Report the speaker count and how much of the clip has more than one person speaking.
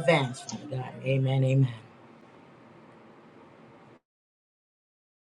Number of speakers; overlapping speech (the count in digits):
1, no overlap